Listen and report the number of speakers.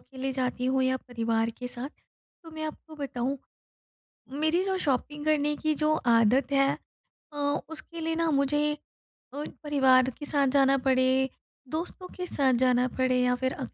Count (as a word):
one